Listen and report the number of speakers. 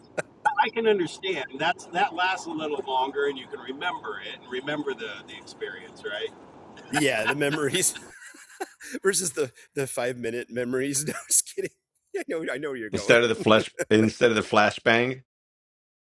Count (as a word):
three